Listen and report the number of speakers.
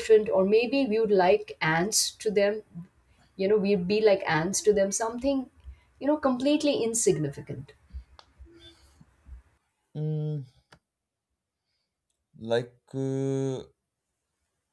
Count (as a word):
two